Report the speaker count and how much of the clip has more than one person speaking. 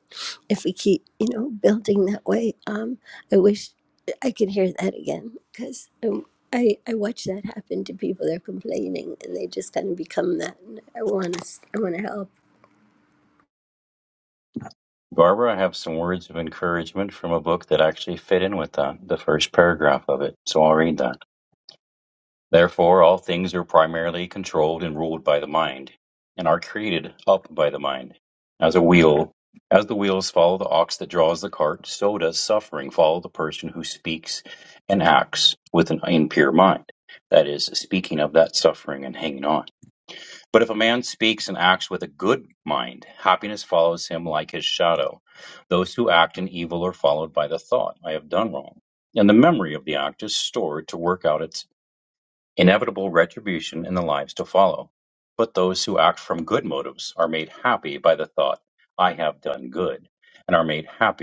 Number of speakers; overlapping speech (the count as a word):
two, no overlap